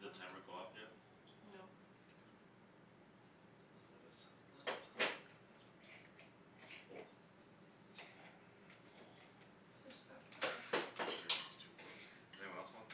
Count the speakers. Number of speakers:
2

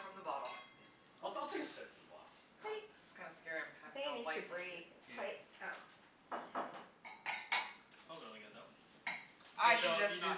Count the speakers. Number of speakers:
4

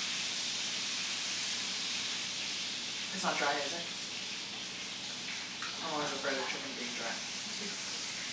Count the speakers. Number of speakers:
1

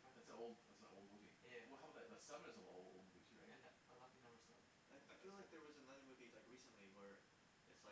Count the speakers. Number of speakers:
3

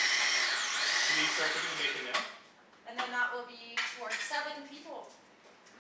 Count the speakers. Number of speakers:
2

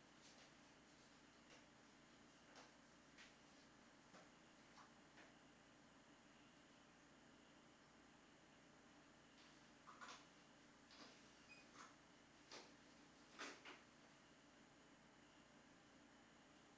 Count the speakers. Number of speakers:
0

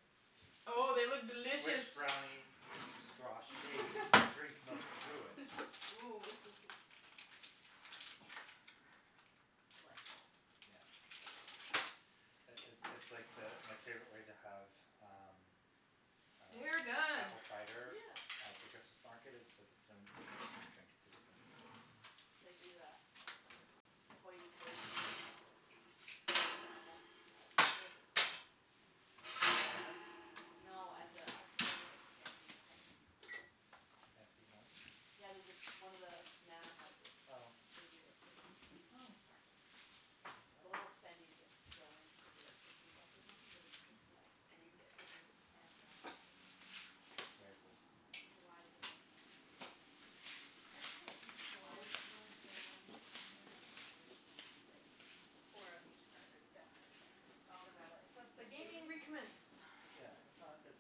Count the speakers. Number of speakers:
4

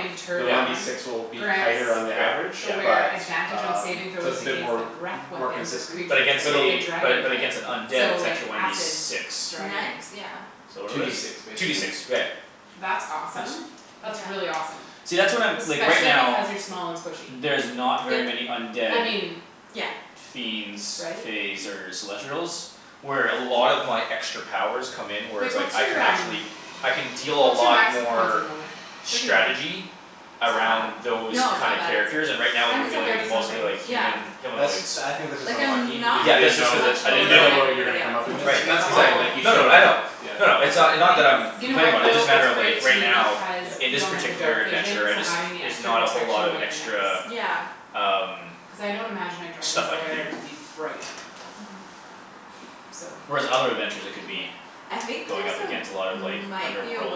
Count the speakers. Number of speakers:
4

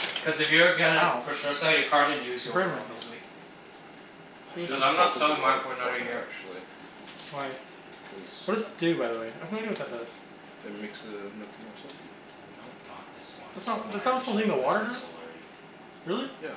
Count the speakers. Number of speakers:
4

